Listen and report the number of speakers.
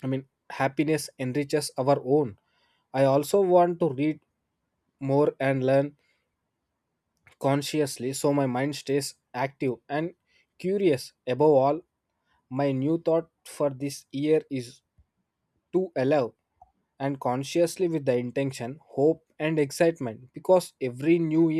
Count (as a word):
one